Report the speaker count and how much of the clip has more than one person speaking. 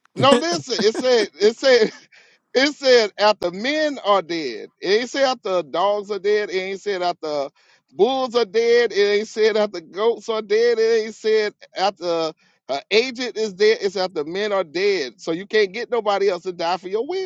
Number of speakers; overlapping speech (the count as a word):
one, no overlap